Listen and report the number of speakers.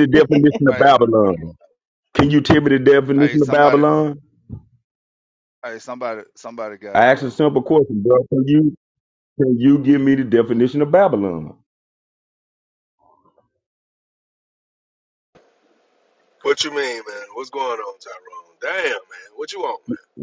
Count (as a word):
three